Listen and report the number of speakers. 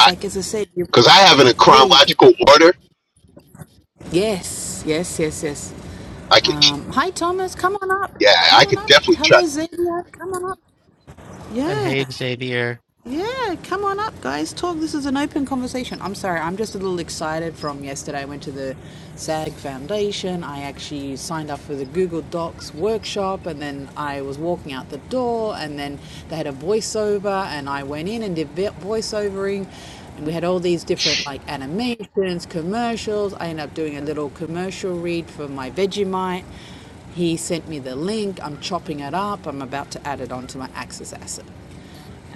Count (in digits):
3